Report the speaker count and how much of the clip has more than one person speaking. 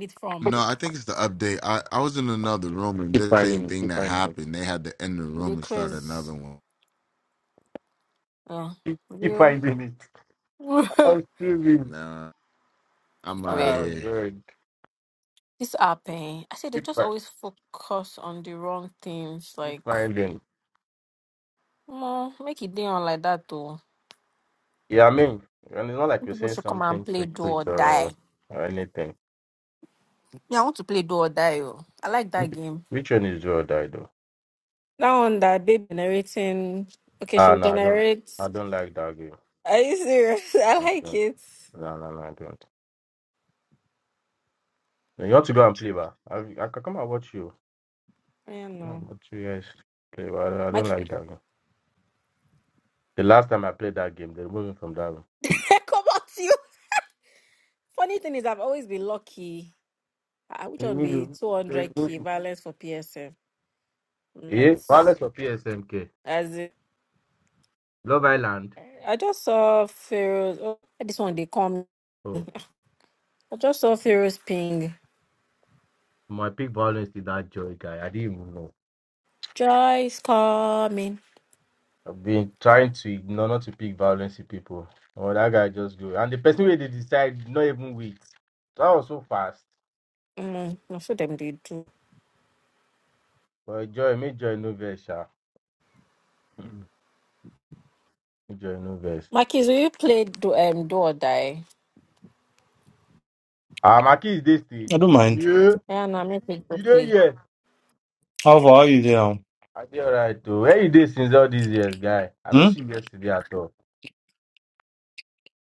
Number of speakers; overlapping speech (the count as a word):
four, about 7%